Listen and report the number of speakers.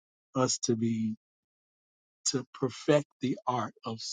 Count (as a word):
one